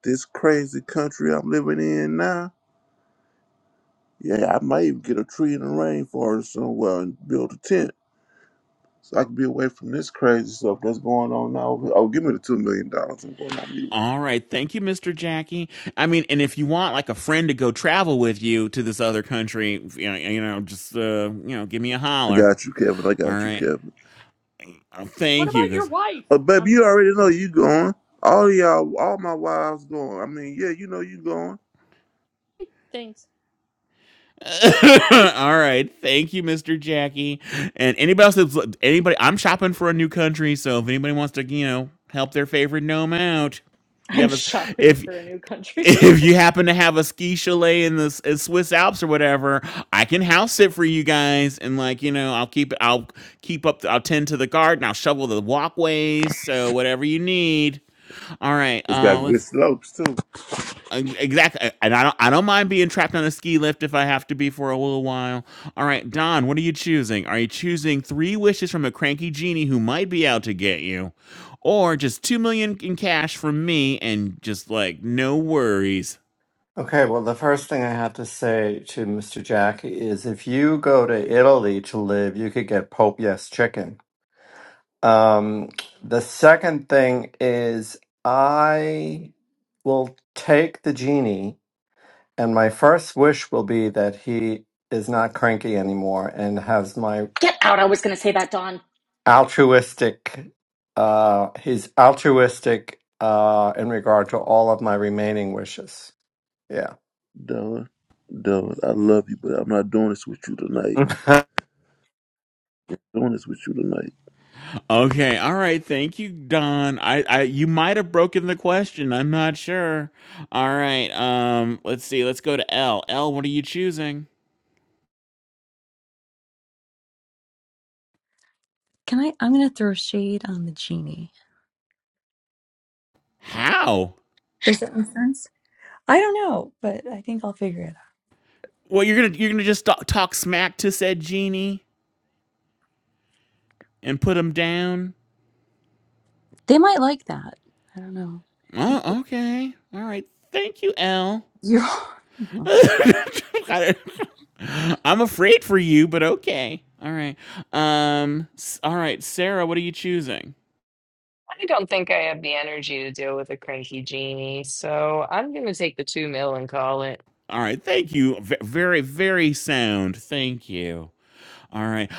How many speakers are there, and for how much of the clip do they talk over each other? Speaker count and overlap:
7, about 2%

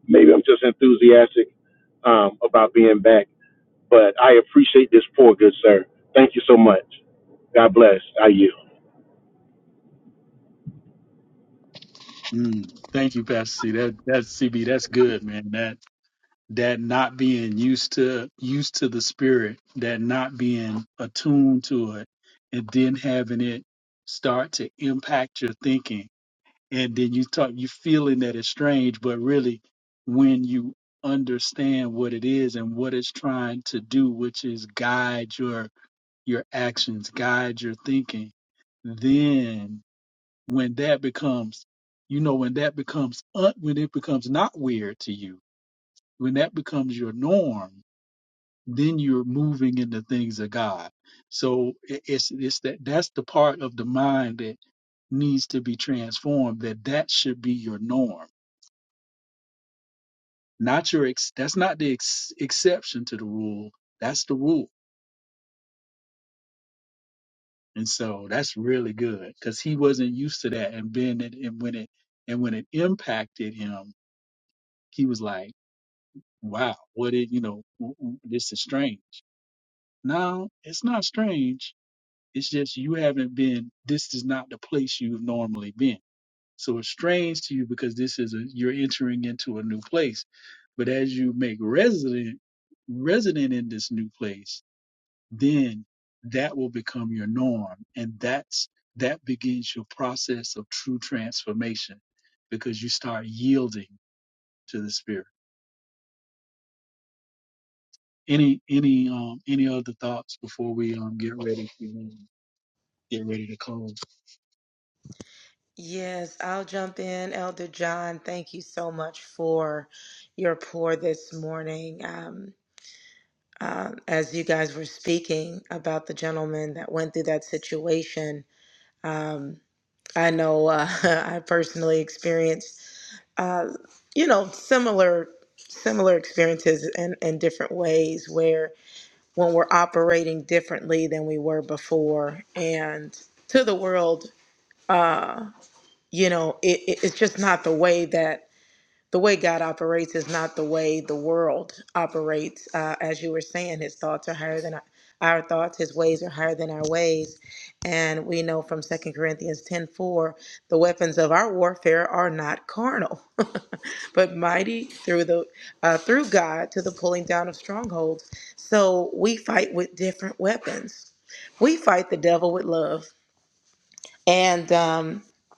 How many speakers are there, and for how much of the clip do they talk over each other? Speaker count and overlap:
3, no overlap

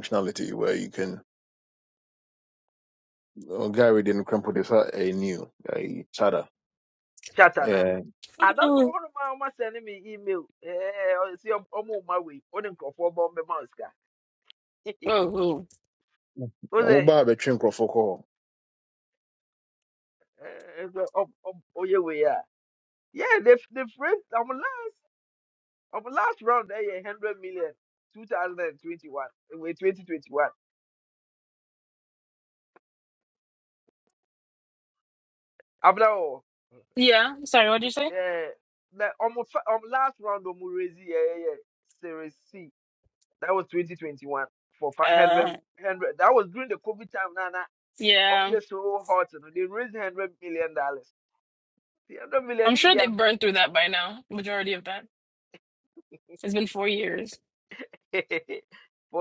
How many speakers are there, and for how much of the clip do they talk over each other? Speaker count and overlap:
3, about 4%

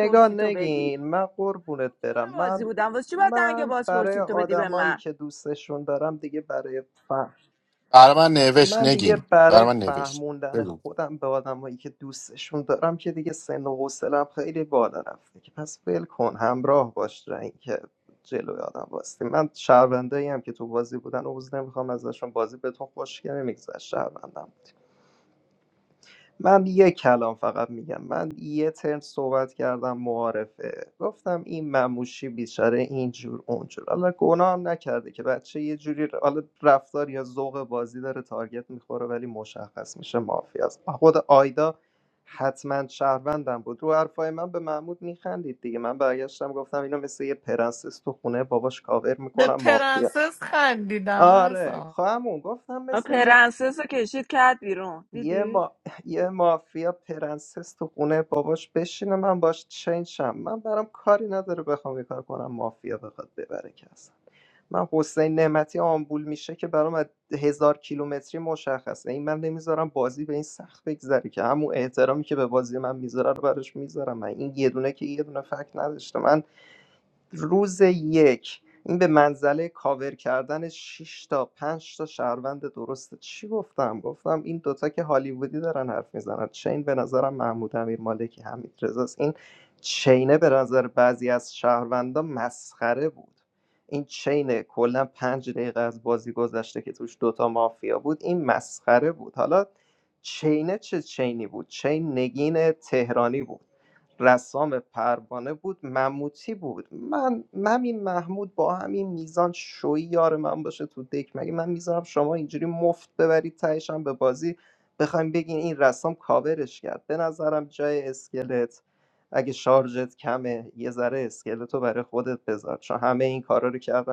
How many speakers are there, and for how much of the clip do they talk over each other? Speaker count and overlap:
4, about 6%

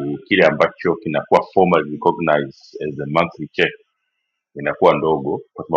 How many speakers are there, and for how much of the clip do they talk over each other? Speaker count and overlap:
1, no overlap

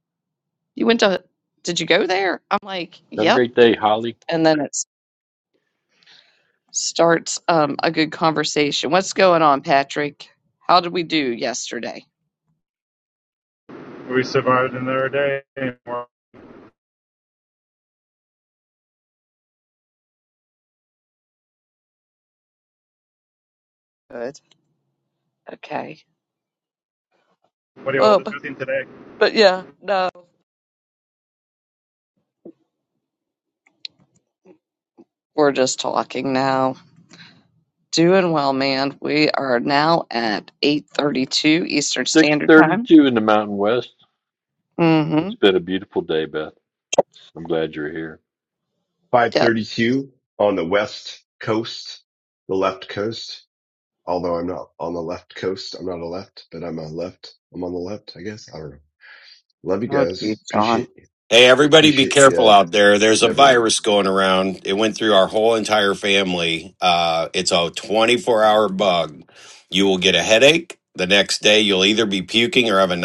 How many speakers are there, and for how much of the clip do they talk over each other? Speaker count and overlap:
5, about 5%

